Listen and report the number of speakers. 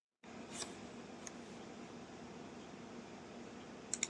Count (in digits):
0